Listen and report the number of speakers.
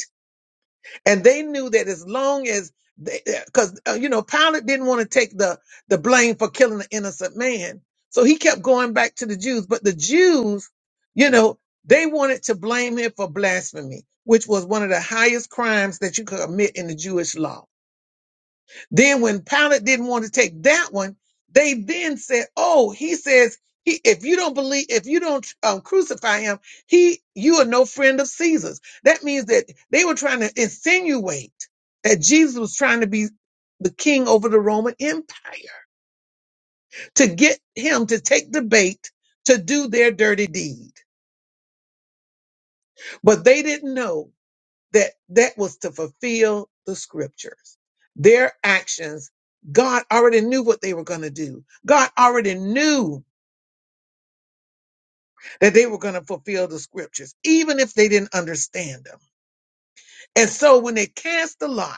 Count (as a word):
one